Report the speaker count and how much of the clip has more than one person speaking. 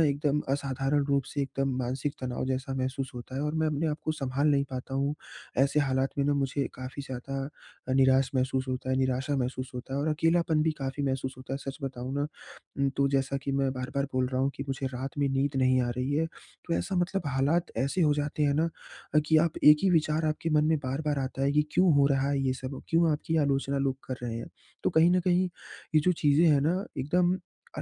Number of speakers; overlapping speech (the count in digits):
1, no overlap